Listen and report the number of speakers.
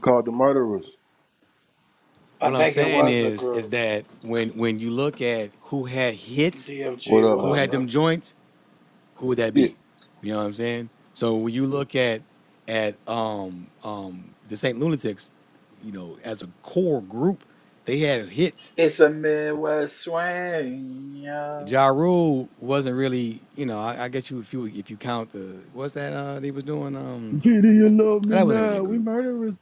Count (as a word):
four